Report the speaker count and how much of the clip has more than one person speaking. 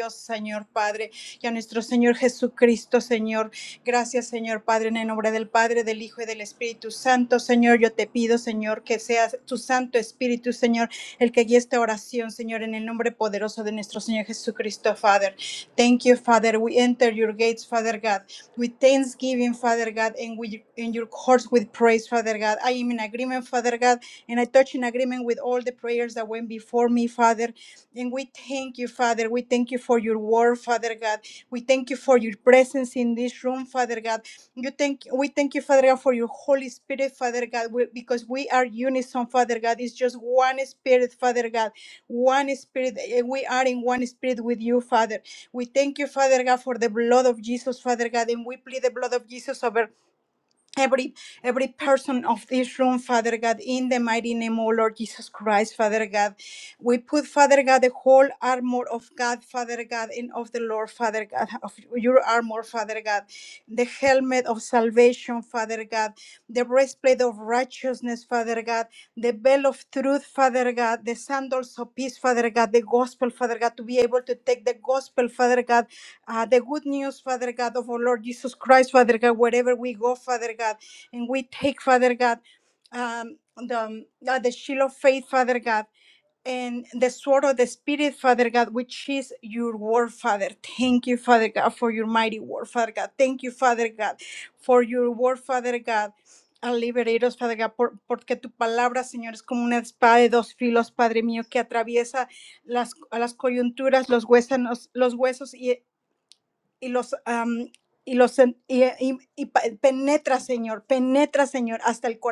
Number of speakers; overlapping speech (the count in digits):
1, no overlap